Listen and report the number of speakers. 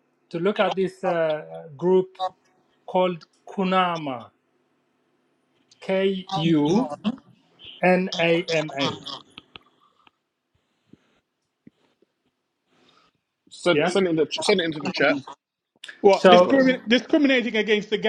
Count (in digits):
3